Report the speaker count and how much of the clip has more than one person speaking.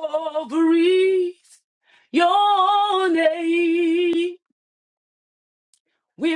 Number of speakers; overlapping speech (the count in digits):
1, no overlap